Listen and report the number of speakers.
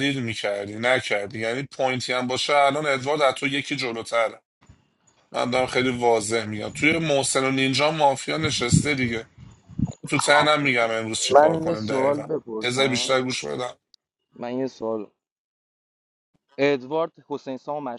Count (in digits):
2